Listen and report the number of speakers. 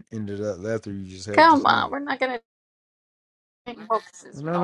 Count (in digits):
2